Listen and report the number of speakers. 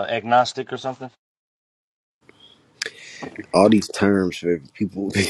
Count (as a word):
two